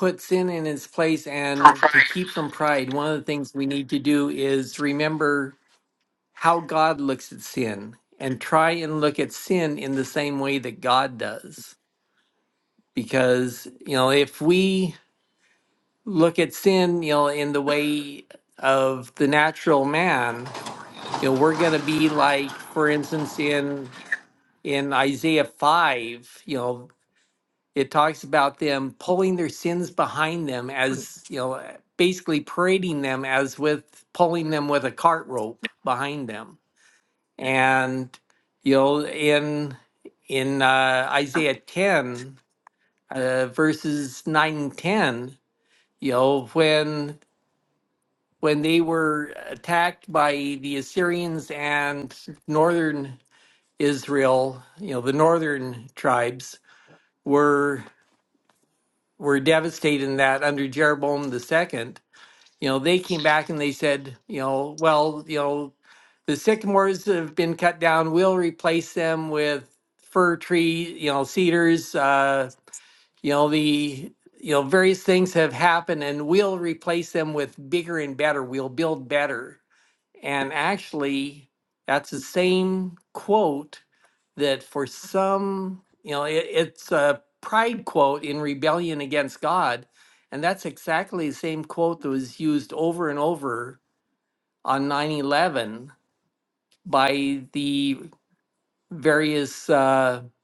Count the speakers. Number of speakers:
one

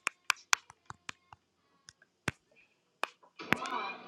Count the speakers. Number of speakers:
zero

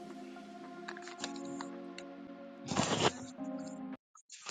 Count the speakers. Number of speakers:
zero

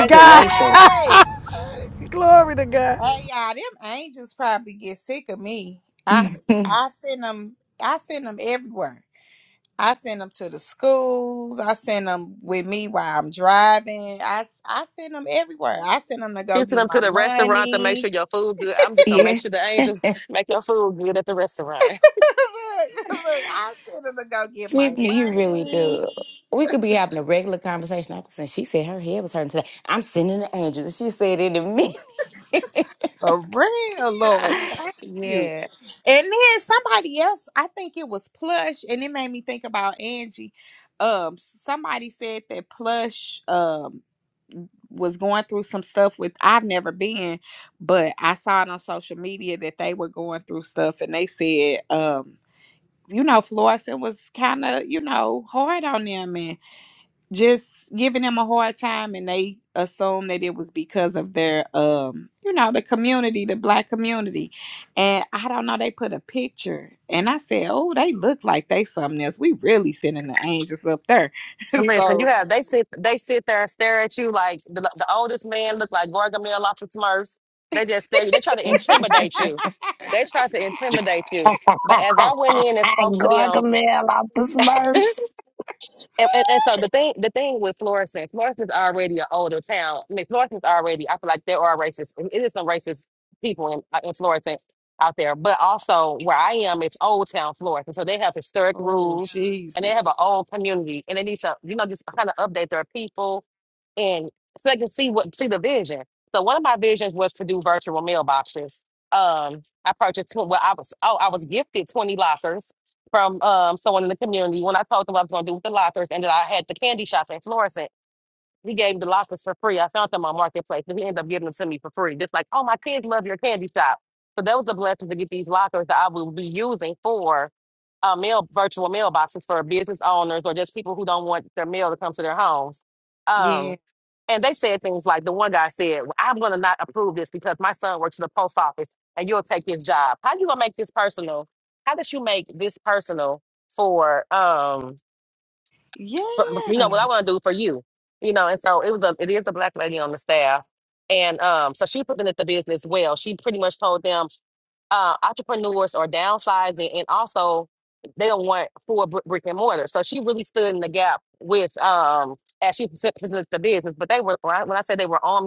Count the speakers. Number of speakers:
five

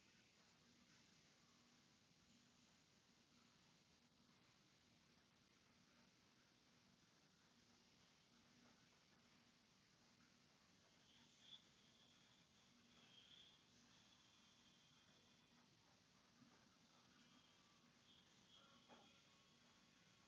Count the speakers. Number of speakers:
zero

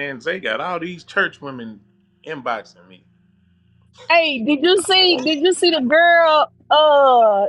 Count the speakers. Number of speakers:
two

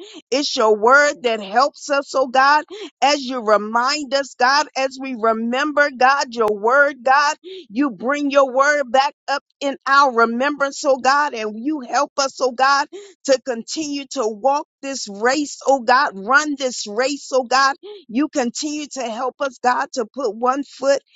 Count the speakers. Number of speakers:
one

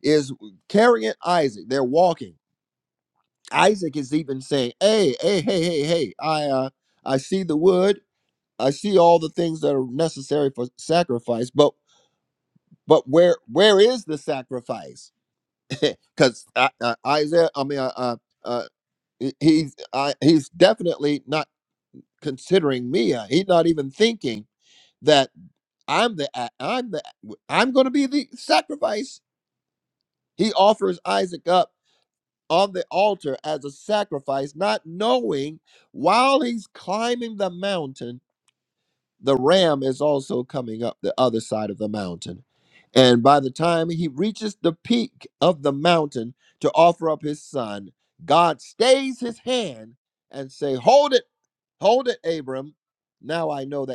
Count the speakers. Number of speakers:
one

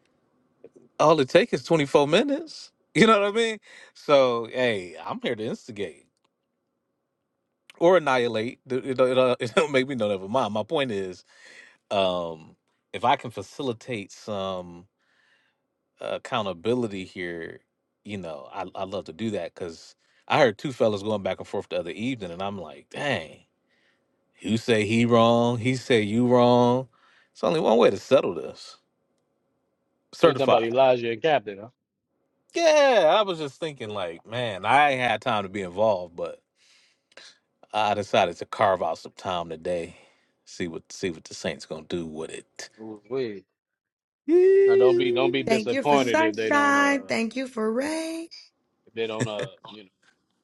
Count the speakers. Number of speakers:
three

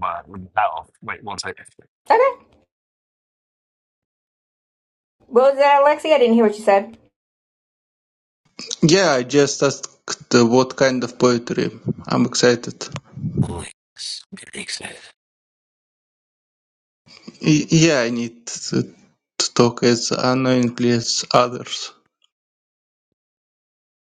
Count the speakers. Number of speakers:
four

